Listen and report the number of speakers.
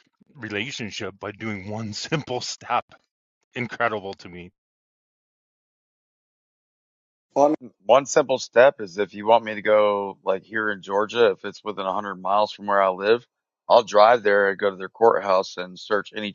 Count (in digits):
2